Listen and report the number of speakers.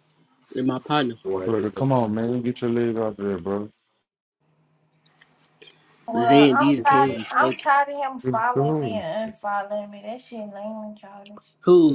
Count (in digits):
3